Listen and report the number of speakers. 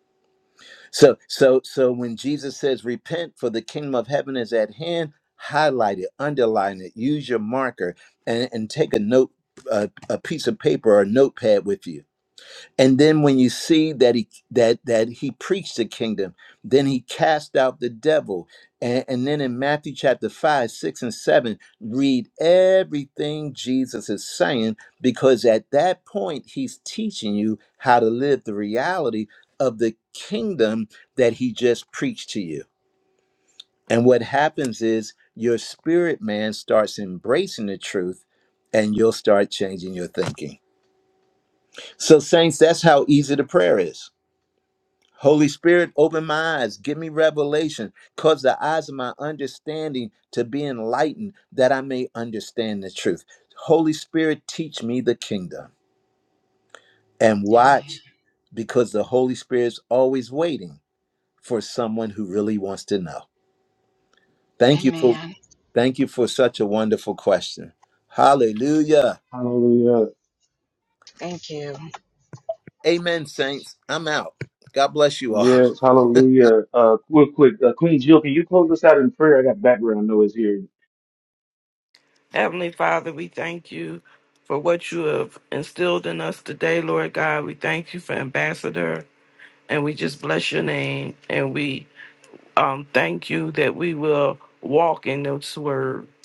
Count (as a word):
four